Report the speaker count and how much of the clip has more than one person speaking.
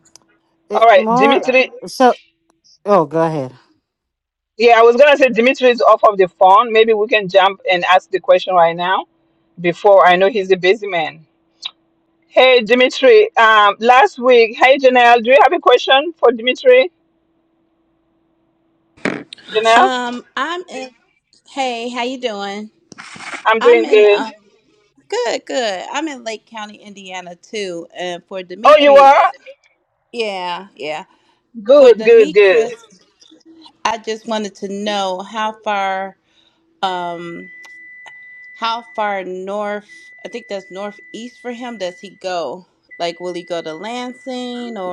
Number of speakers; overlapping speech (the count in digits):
3, about 7%